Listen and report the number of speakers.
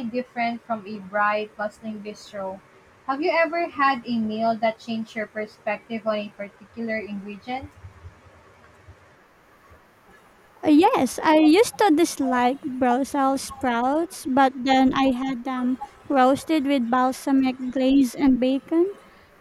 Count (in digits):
2